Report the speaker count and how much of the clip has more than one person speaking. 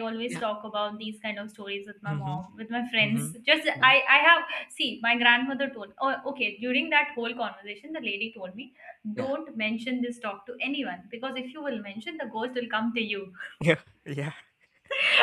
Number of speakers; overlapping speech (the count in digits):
2, about 7%